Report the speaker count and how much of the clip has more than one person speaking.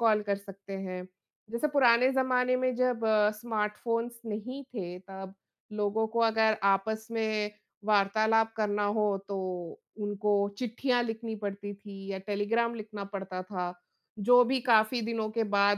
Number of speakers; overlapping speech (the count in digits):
1, no overlap